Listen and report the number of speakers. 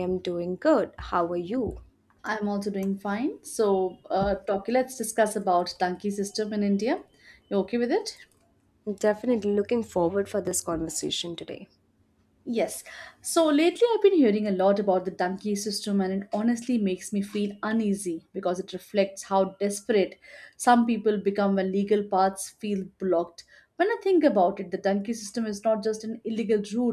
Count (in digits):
2